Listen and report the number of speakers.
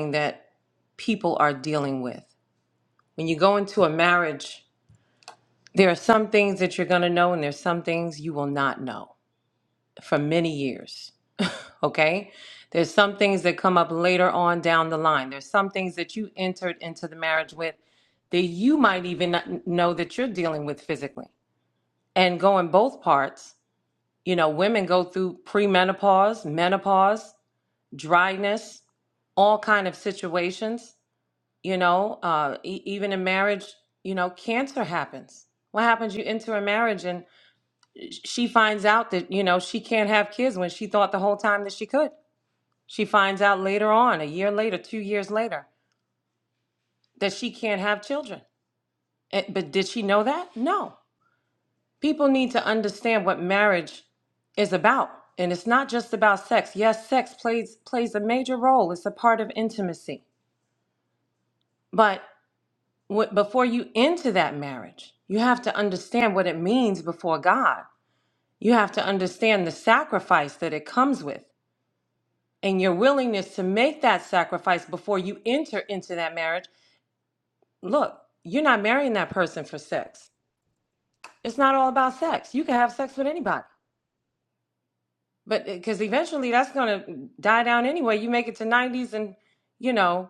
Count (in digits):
1